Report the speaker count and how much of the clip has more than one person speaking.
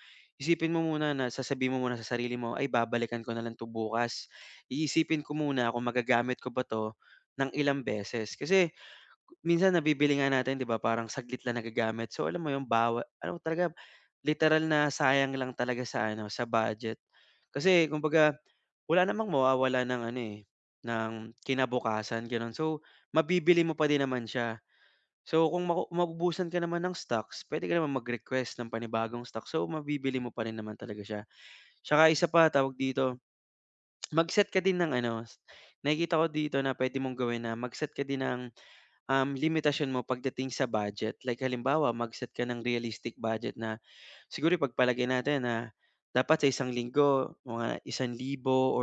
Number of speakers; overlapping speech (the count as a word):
one, no overlap